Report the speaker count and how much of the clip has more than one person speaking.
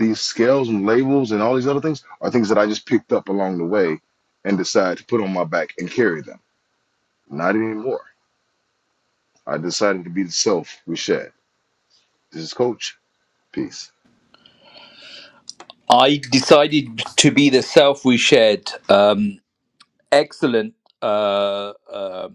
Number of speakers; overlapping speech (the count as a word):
two, no overlap